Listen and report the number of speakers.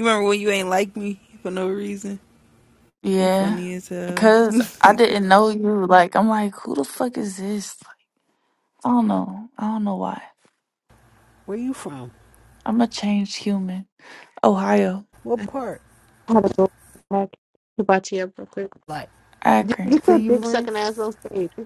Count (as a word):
four